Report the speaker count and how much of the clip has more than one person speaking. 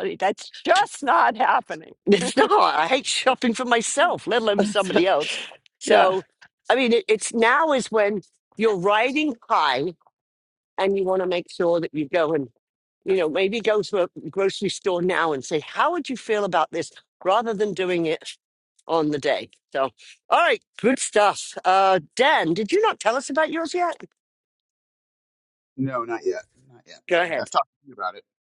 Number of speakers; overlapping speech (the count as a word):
three, about 1%